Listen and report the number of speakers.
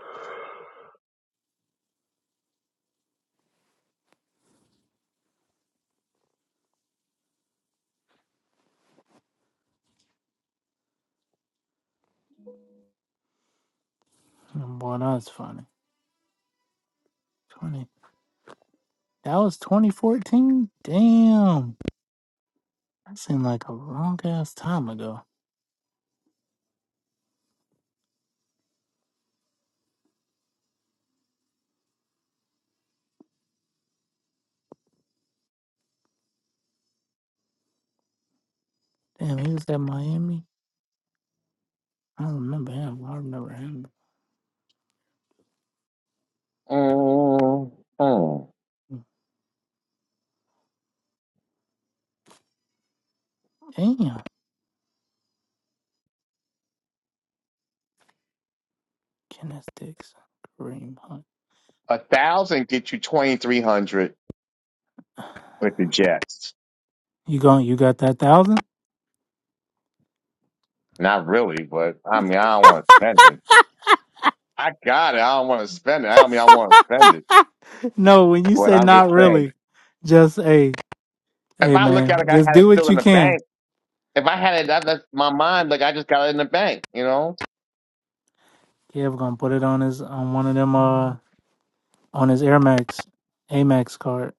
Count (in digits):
2